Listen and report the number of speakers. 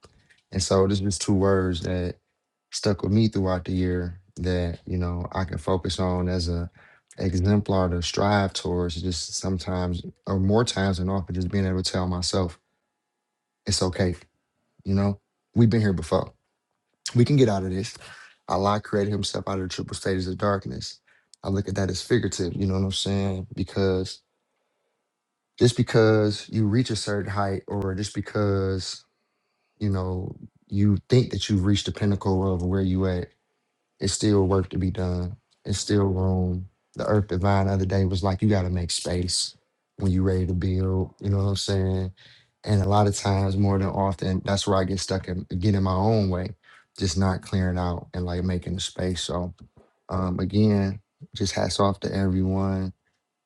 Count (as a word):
one